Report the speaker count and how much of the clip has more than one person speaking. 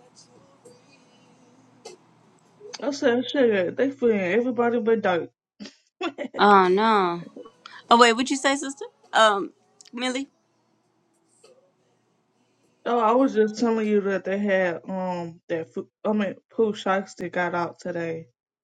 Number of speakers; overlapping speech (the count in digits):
2, no overlap